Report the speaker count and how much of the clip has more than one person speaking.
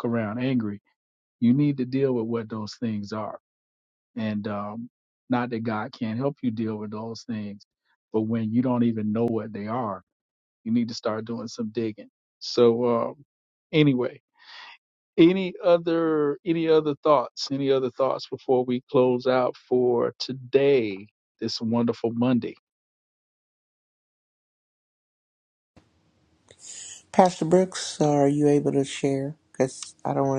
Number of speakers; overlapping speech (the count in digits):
2, no overlap